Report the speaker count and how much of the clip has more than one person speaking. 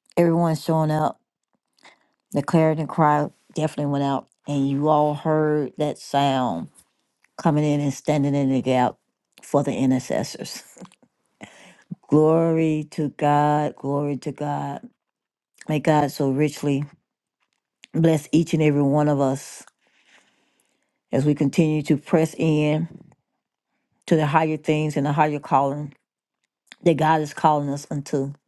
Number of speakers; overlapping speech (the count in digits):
1, no overlap